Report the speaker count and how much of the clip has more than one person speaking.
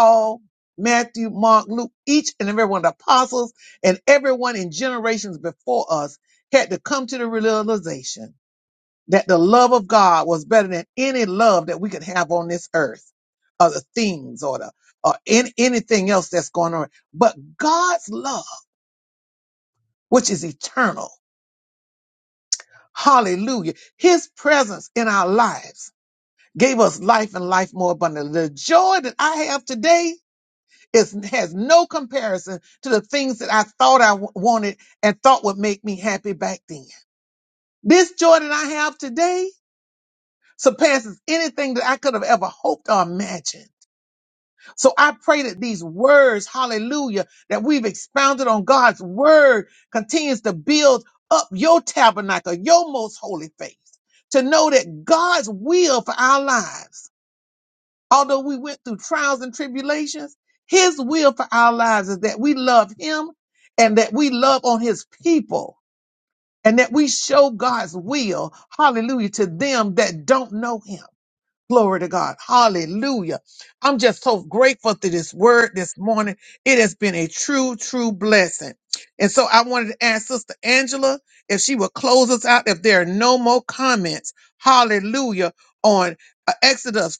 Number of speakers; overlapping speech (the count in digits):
1, no overlap